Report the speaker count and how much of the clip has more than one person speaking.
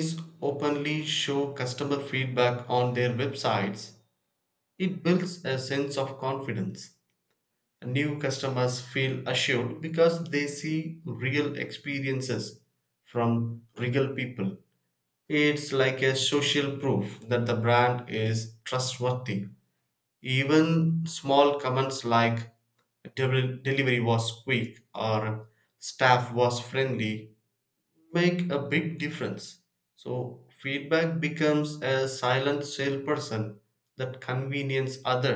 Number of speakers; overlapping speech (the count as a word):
one, no overlap